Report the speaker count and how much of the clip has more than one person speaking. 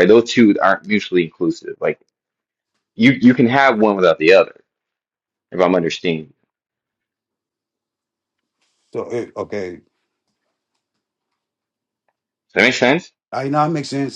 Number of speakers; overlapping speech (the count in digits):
2, no overlap